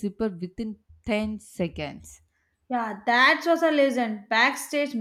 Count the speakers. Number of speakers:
2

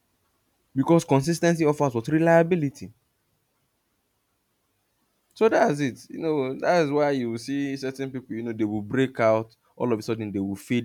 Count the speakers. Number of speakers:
1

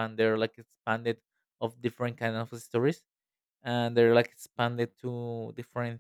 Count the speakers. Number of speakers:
1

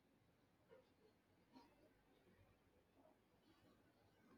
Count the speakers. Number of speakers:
0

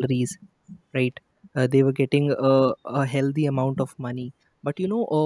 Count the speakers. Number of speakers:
1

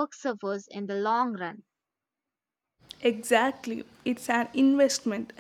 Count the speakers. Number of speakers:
2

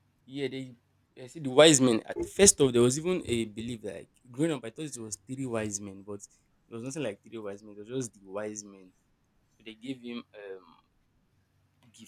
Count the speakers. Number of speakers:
1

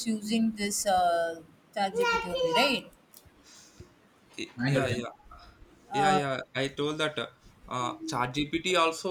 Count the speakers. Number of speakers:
2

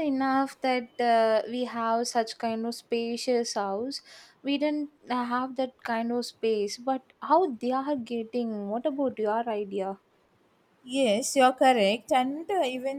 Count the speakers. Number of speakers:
2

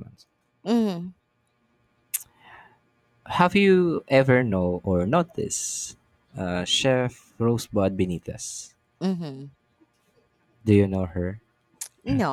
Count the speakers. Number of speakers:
2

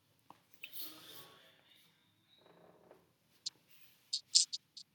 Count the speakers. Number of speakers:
0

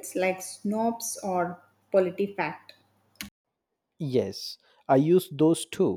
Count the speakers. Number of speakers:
2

